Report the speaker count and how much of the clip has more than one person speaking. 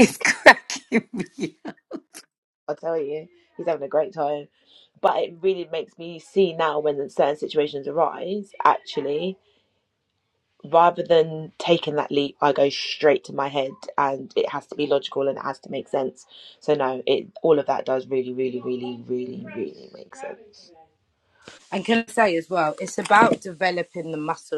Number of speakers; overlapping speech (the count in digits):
3, no overlap